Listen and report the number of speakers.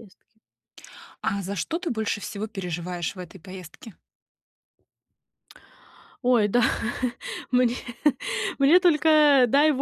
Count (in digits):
2